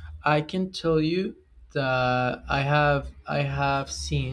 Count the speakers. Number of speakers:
one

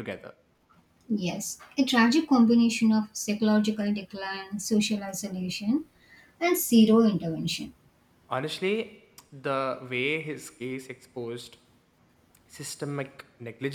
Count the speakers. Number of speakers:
two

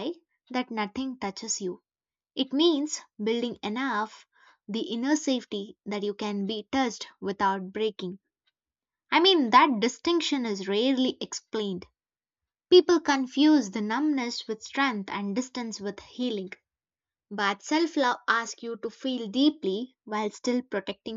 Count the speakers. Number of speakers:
one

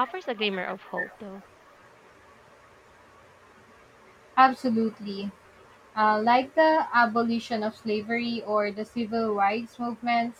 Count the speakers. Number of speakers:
two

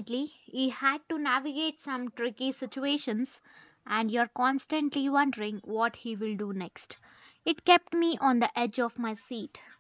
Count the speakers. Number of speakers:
one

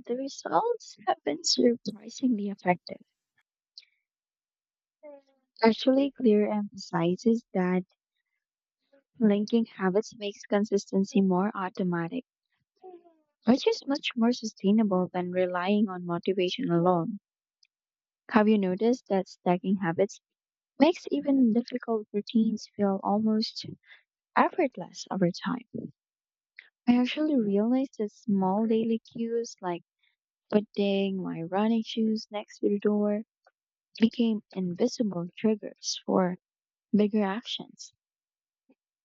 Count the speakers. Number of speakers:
one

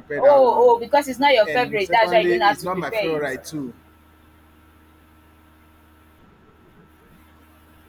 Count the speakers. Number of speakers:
two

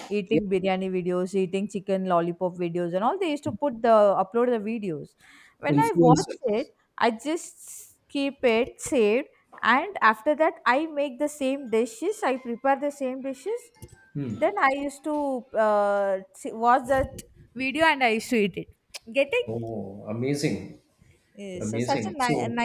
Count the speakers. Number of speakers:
two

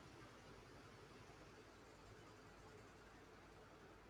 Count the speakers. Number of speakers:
zero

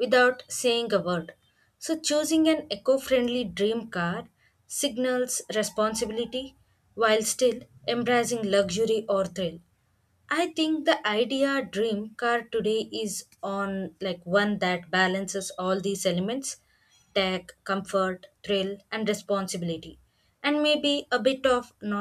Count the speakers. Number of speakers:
one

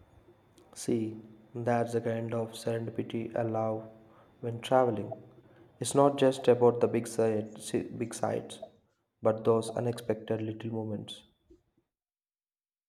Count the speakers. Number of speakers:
one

